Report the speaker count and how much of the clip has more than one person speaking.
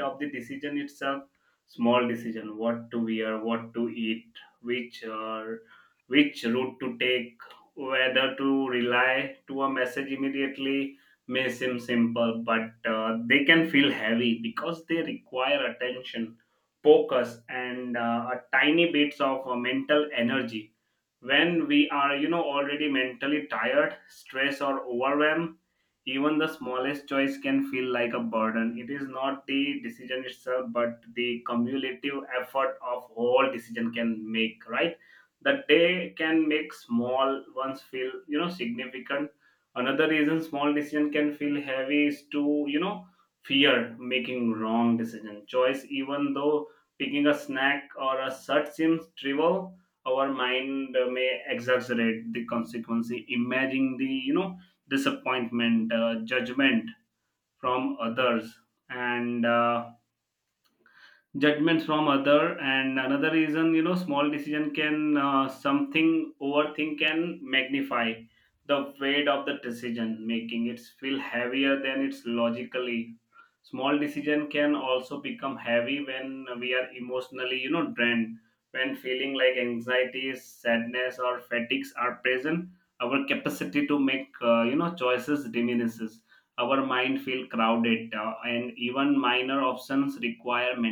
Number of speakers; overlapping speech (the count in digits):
1, no overlap